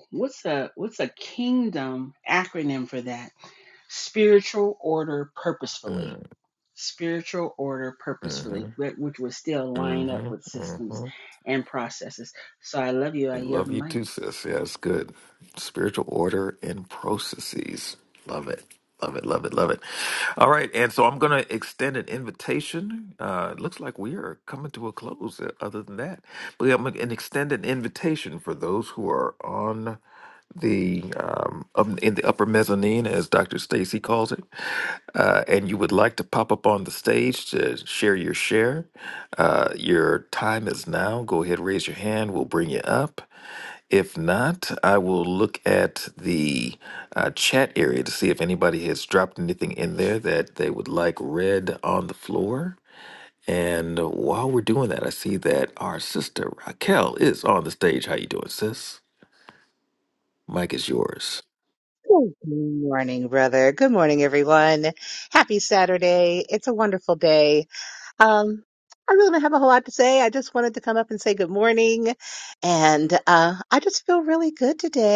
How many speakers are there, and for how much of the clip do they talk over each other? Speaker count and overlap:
3, about 3%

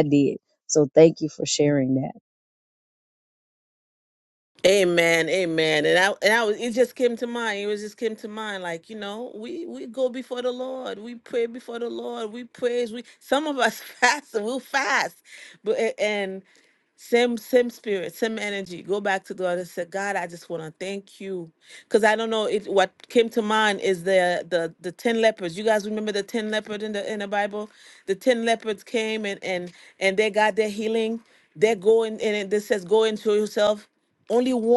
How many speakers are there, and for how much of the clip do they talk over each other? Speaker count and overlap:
2, no overlap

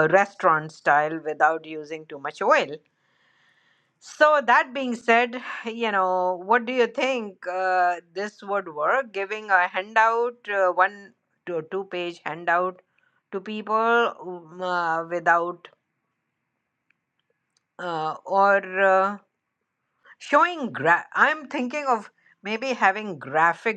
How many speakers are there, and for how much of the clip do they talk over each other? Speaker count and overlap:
1, no overlap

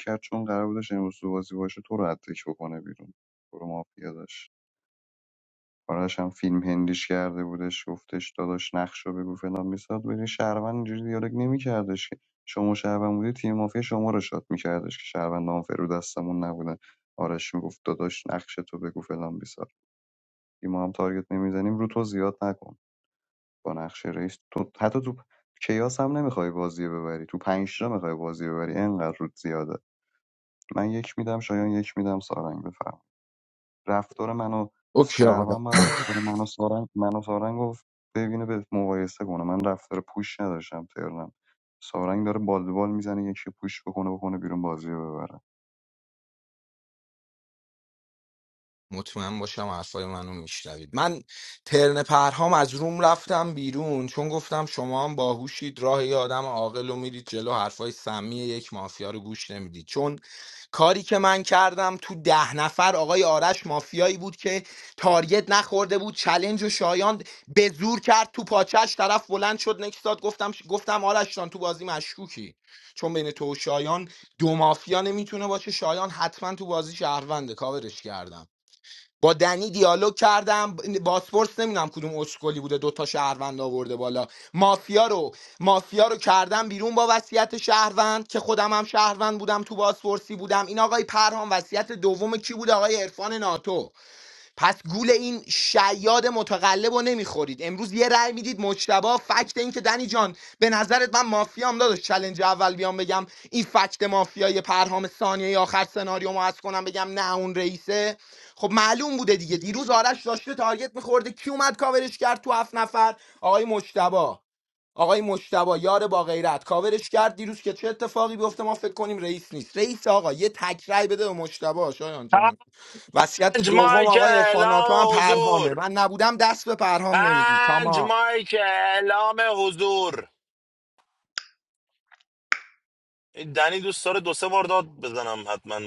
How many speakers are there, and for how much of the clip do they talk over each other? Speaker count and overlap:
3, about 3%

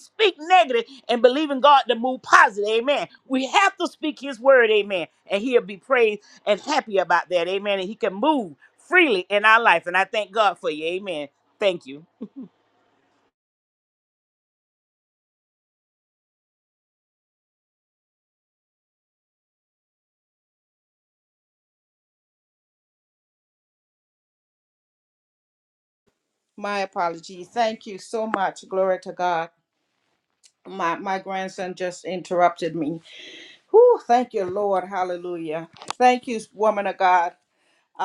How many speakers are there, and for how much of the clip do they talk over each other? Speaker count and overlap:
2, no overlap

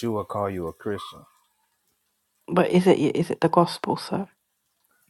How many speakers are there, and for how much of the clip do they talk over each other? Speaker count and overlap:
2, no overlap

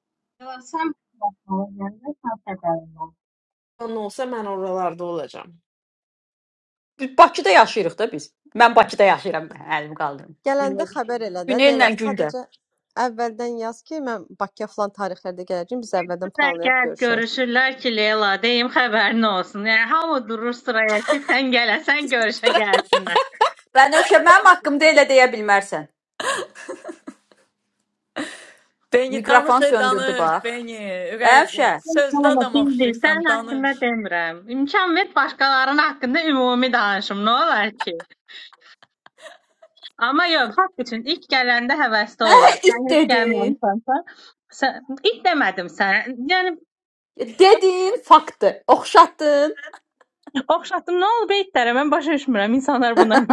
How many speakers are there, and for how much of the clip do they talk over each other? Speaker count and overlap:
5, about 11%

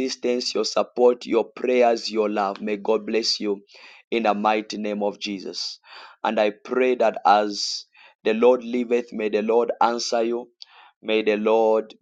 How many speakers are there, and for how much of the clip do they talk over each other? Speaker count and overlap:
1, no overlap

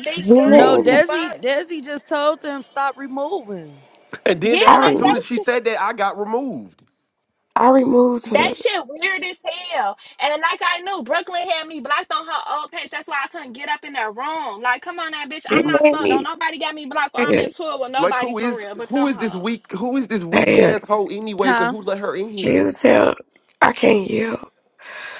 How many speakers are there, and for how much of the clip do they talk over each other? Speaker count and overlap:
4, about 24%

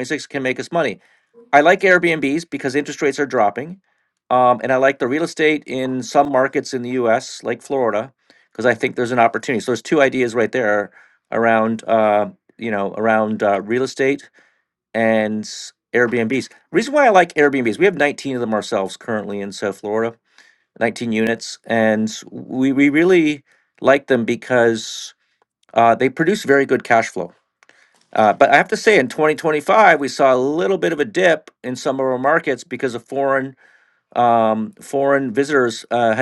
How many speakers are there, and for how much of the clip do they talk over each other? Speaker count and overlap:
1, no overlap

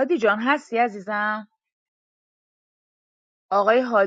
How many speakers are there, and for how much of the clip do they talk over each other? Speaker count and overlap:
1, no overlap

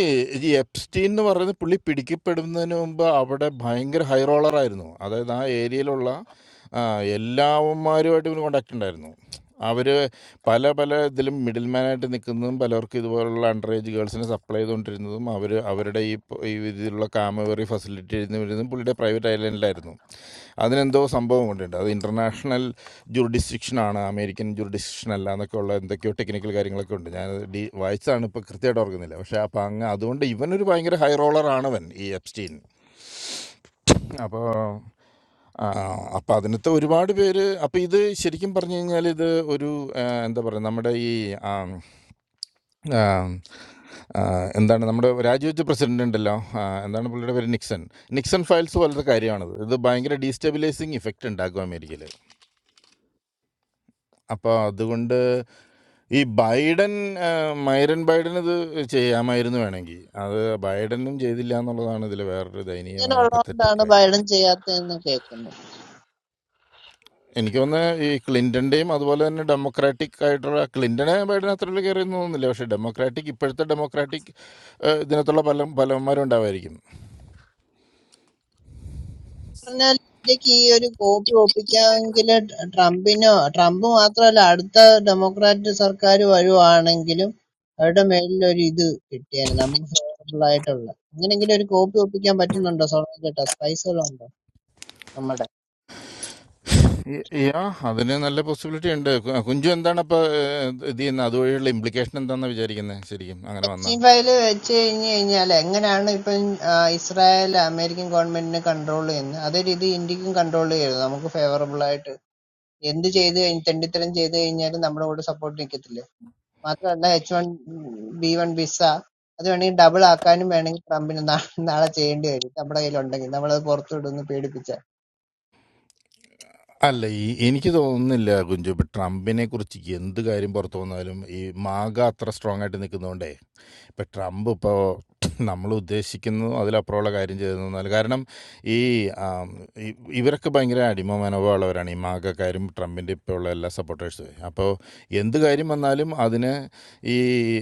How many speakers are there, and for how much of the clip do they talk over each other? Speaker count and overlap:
2, about 1%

